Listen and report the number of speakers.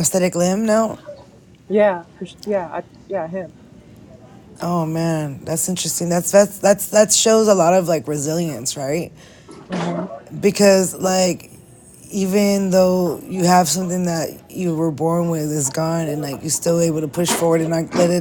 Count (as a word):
two